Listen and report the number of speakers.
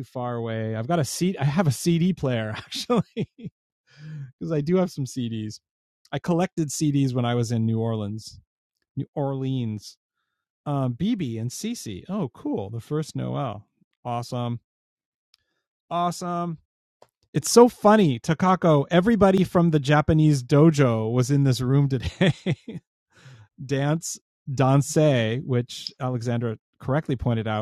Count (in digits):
1